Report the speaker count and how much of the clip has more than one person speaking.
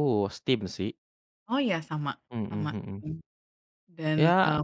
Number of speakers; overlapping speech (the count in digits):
2, about 19%